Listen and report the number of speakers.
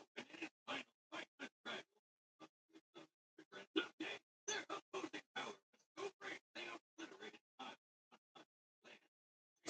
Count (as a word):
zero